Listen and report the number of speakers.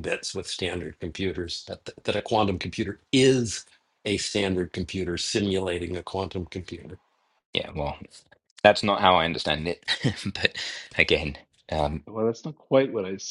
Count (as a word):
three